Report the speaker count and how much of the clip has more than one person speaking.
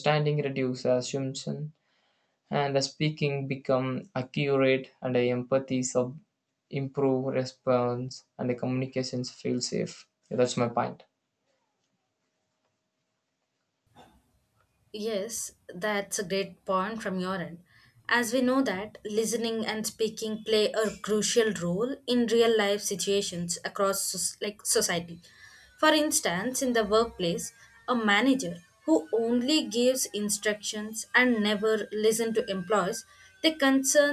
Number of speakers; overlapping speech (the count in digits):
2, no overlap